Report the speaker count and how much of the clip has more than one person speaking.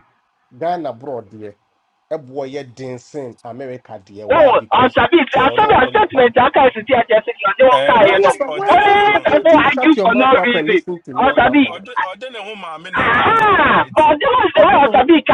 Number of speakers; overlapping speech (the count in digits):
3, about 44%